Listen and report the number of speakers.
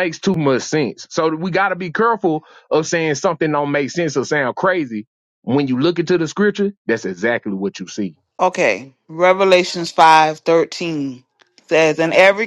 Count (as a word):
two